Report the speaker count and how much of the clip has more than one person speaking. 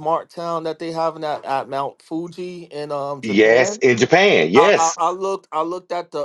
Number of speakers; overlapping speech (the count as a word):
two, about 15%